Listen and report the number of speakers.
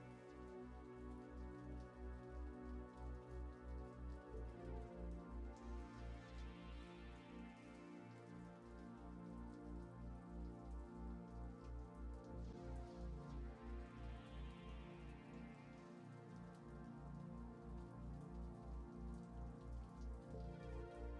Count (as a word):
zero